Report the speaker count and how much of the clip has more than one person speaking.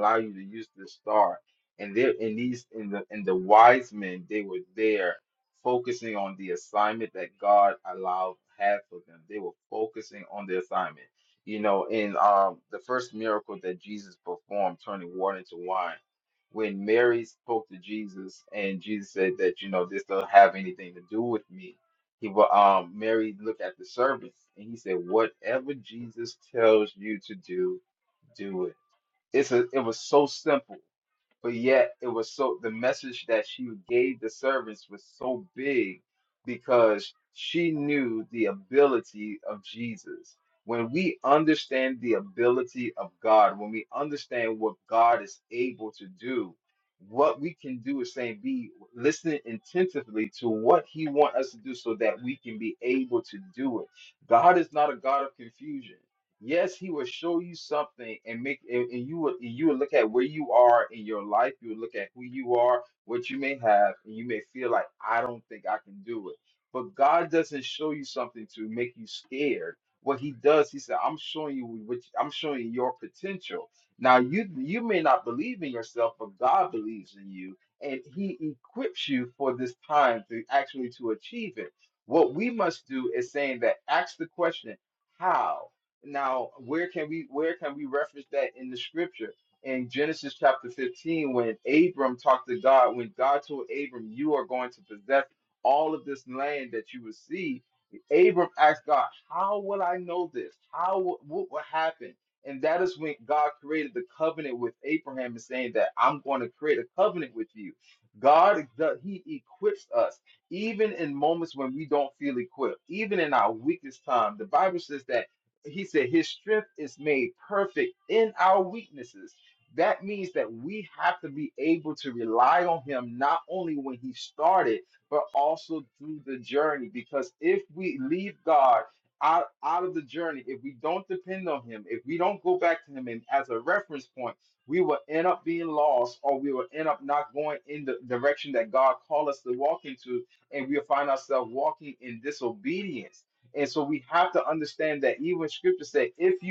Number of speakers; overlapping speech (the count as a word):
one, no overlap